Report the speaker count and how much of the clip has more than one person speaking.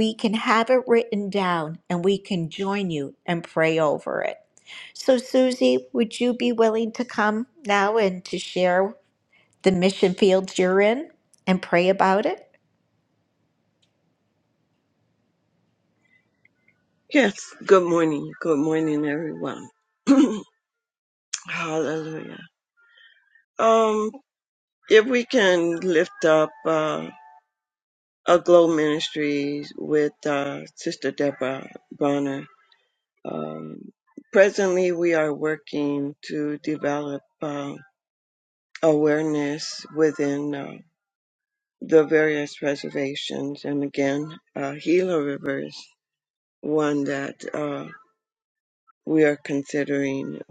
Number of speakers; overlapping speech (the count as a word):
two, no overlap